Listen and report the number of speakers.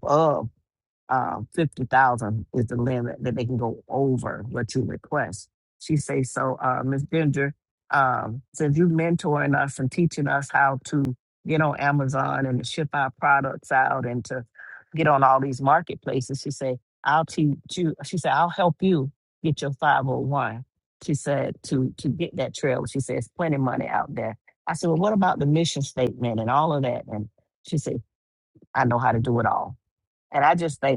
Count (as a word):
one